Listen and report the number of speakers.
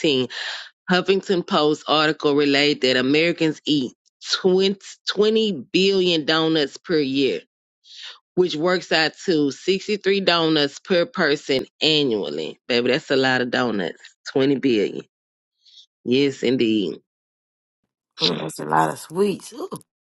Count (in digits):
2